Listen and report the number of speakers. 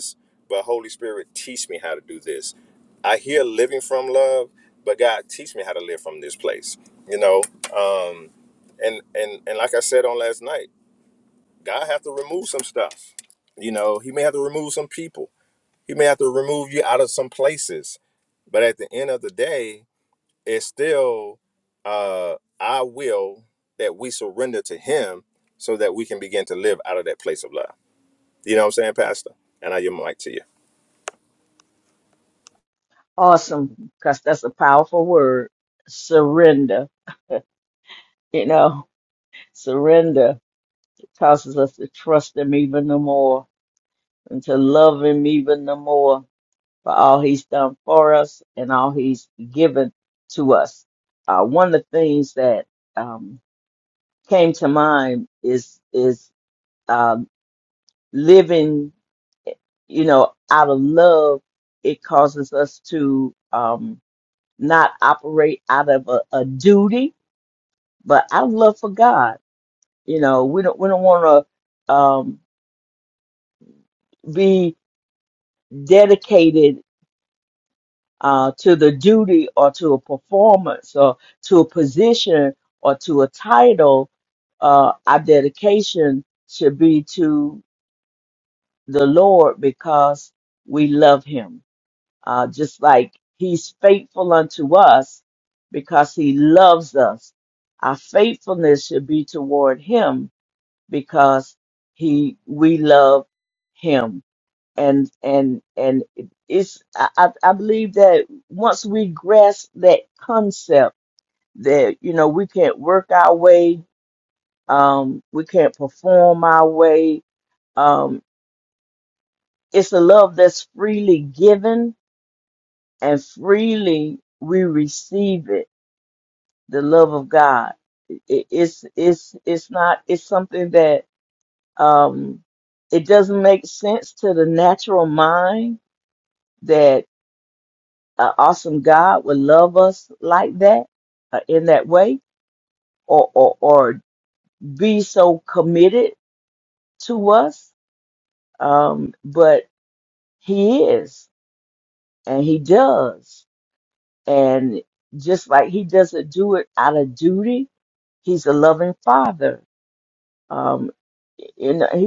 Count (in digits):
2